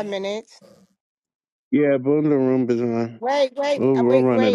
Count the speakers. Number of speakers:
two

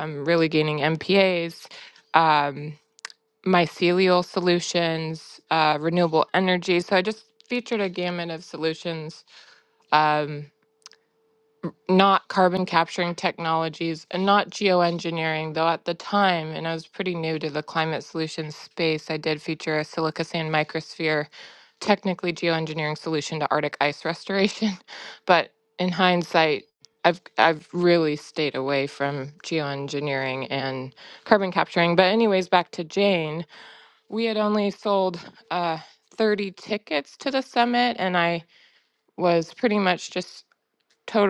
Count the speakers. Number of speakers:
one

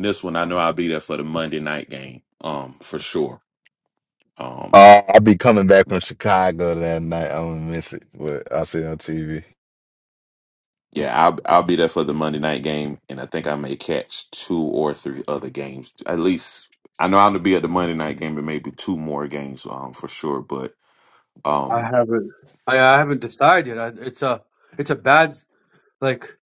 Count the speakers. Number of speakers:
three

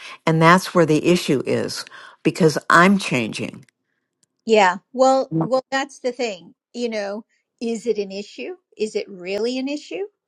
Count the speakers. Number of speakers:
two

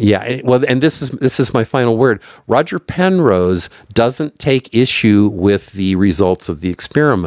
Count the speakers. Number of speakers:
one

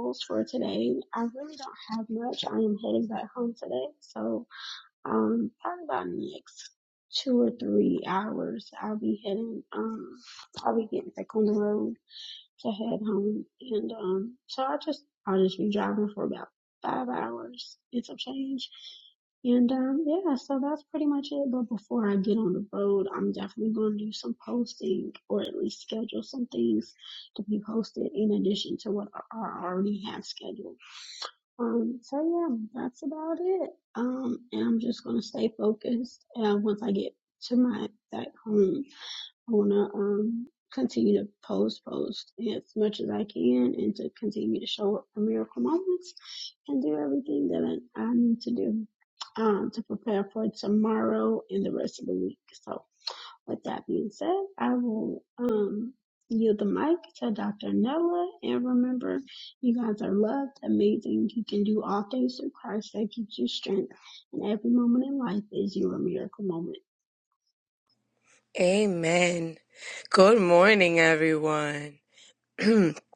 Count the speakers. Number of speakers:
two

